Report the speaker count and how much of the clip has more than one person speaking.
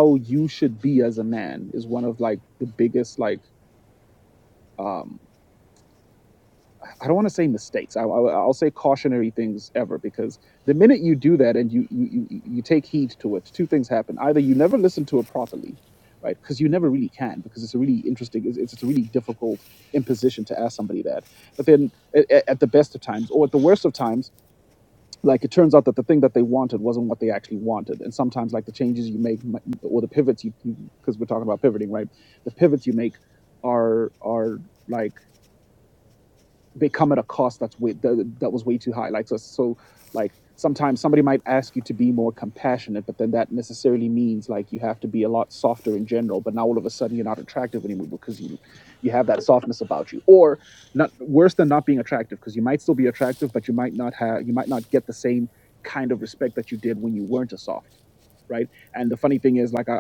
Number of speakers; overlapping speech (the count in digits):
1, no overlap